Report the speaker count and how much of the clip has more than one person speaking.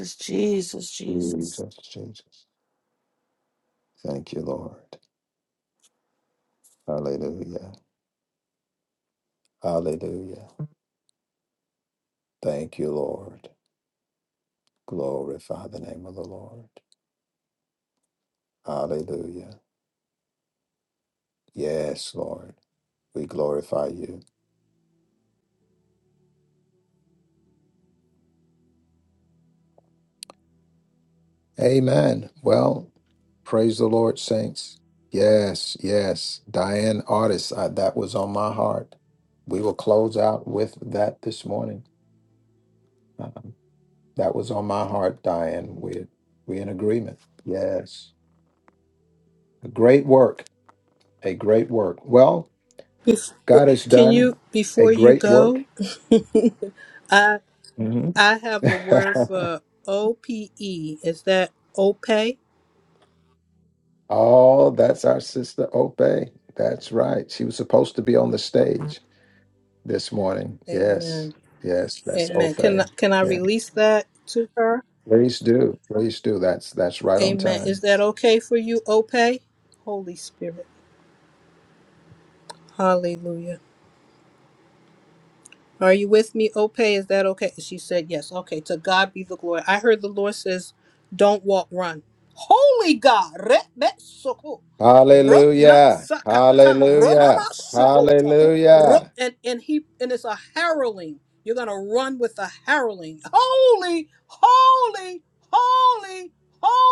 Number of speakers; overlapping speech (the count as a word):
three, about 5%